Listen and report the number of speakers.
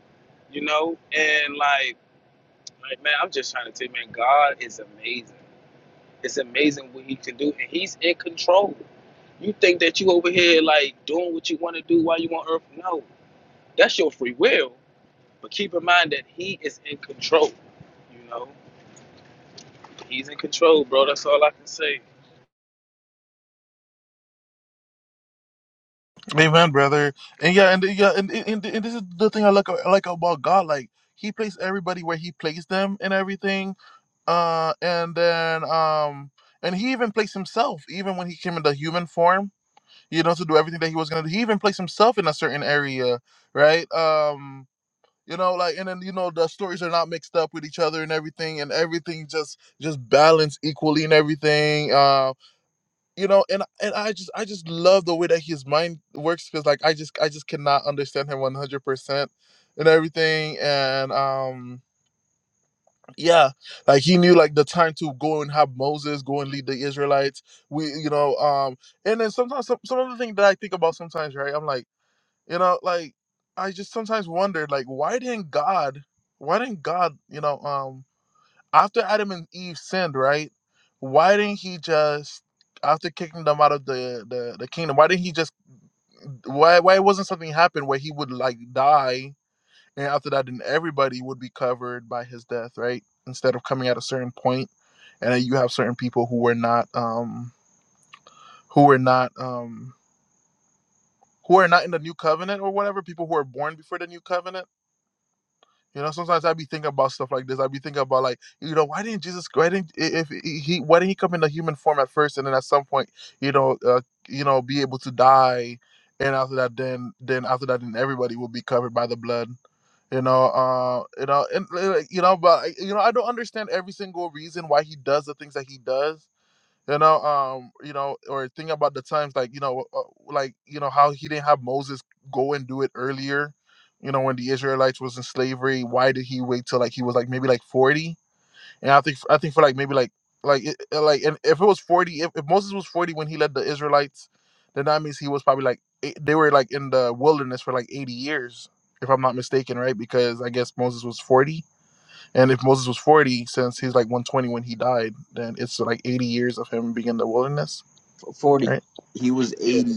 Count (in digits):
3